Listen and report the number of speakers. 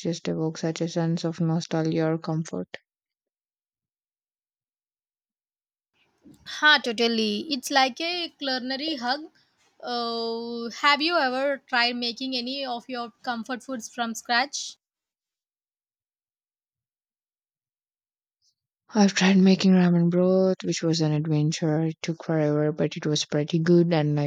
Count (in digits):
2